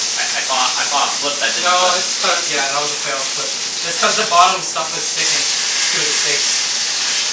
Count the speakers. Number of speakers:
2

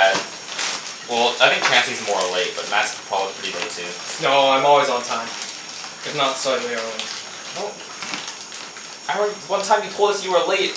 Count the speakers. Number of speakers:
2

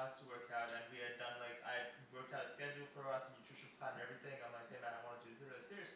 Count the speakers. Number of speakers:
1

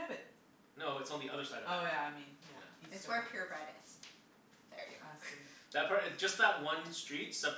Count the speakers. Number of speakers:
3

